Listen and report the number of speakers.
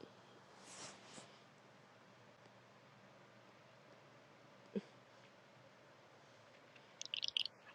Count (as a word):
zero